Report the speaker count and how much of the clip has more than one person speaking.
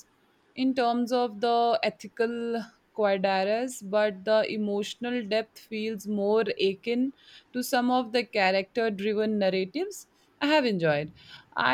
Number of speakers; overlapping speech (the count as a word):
one, no overlap